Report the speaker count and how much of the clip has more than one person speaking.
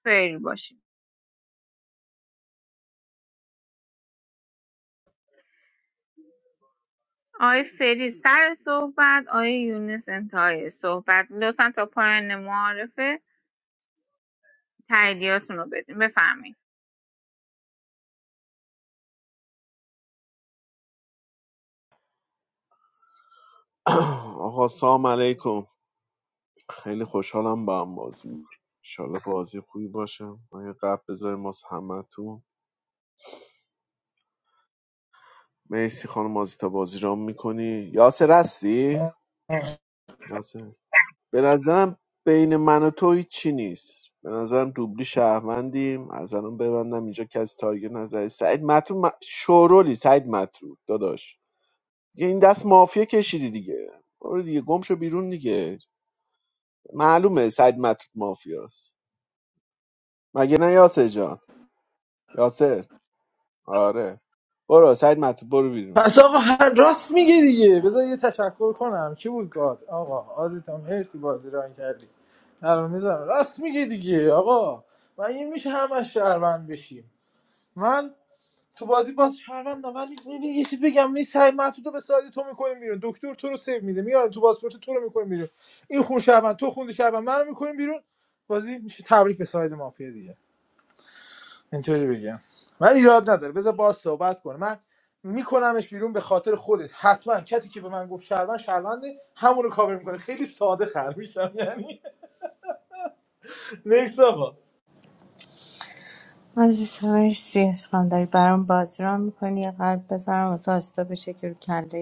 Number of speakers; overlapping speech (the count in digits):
4, under 1%